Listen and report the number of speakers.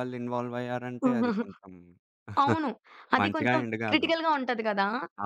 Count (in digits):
2